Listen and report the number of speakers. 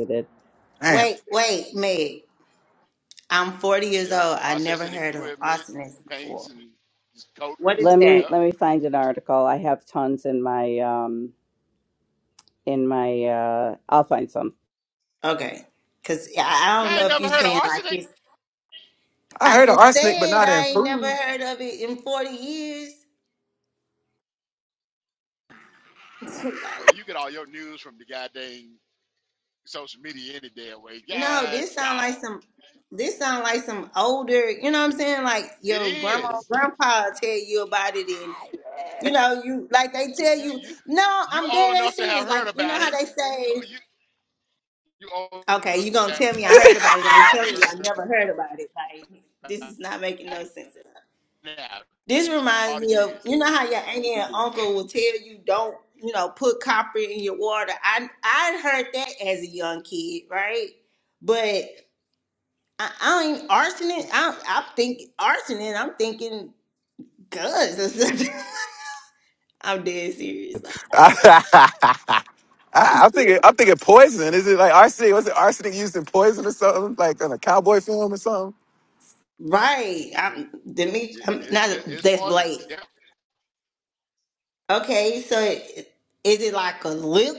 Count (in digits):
4